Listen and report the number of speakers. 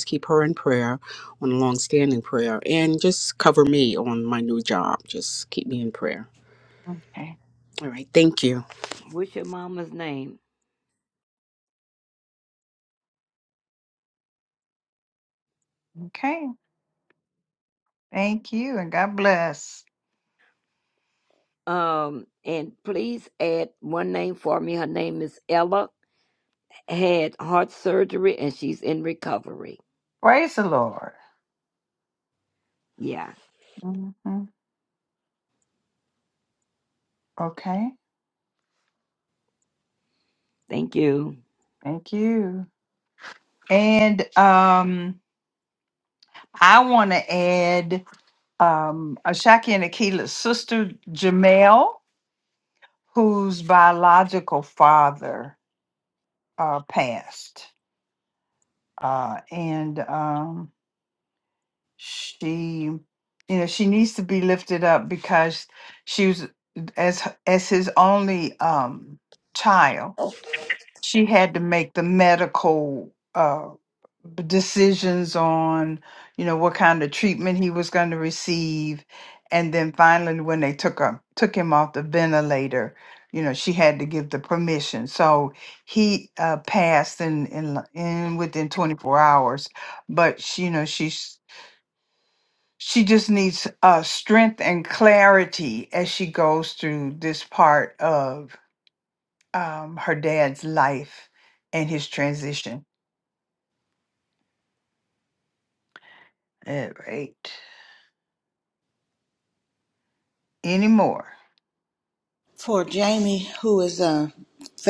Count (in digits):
4